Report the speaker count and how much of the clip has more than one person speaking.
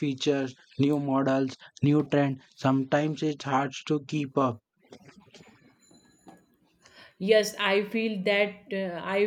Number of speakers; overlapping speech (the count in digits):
2, no overlap